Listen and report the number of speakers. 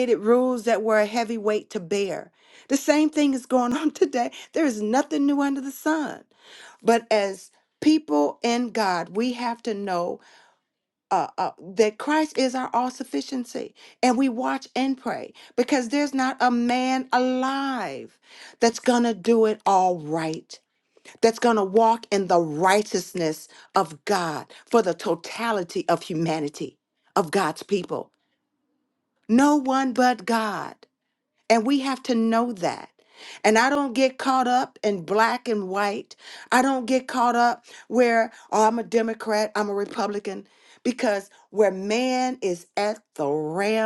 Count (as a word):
one